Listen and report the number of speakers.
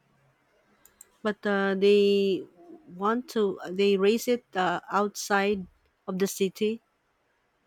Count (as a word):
one